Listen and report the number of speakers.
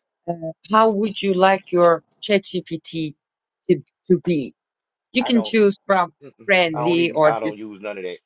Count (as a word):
two